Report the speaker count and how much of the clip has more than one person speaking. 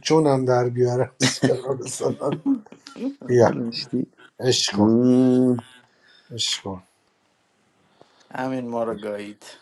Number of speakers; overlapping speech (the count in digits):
3, about 3%